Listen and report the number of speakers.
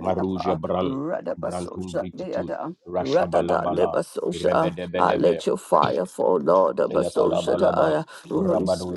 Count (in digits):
2